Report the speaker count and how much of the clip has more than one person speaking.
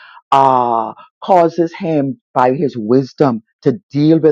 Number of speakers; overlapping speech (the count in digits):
1, no overlap